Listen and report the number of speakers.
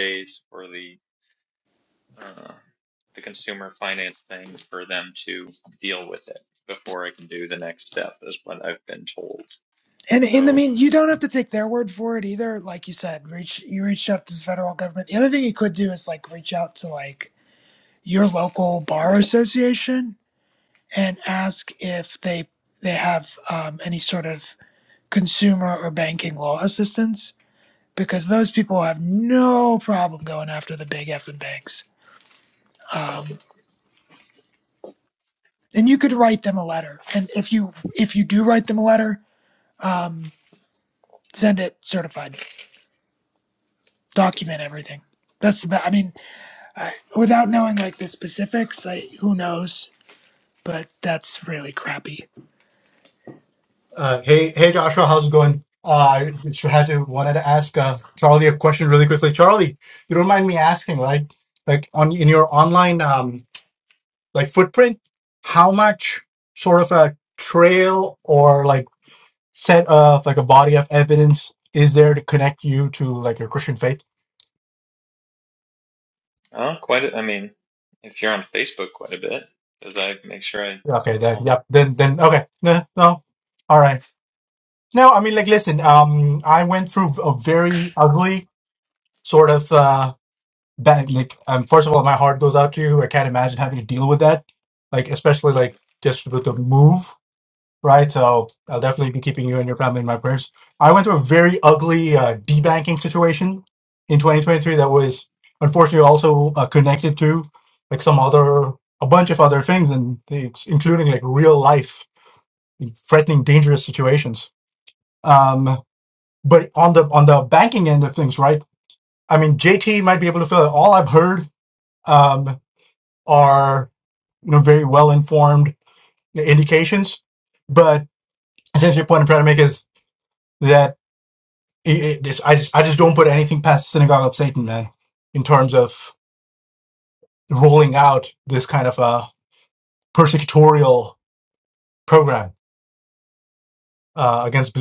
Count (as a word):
three